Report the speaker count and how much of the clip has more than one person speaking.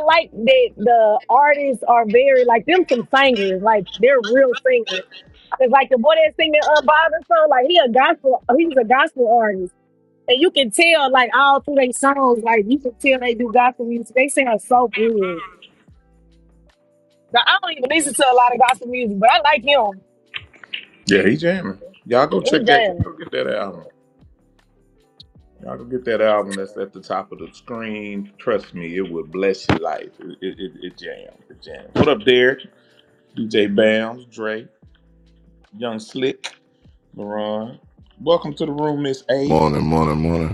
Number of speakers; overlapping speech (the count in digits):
3, about 2%